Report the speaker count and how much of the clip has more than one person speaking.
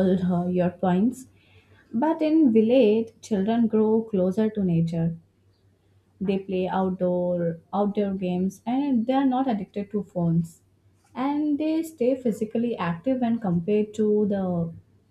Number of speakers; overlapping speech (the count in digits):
1, no overlap